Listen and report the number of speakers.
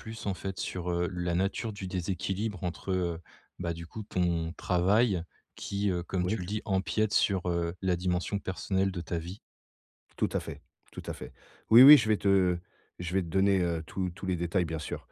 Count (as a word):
two